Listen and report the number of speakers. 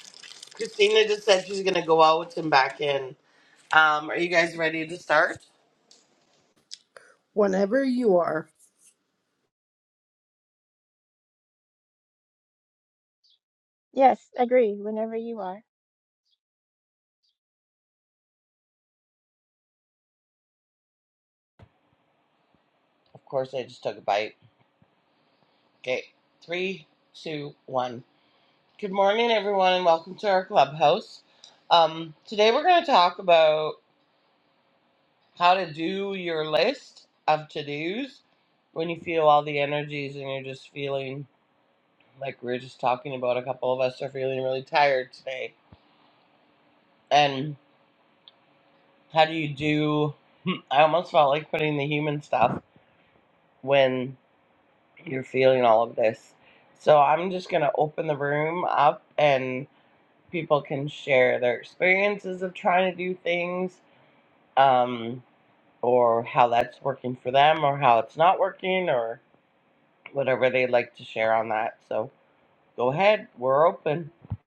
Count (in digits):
3